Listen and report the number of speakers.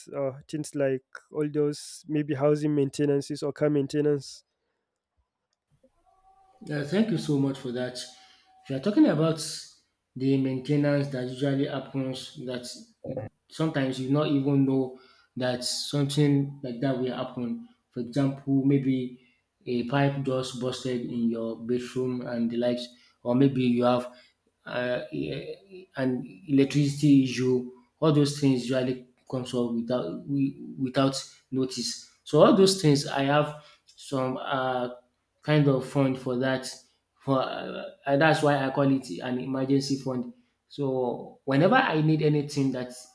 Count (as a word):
two